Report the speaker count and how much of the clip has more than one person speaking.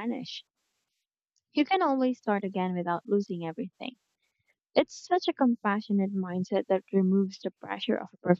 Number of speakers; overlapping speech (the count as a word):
one, no overlap